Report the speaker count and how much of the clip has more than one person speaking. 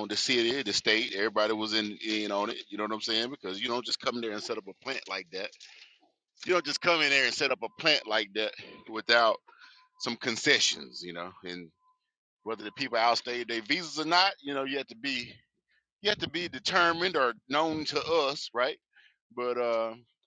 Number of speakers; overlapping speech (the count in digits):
1, no overlap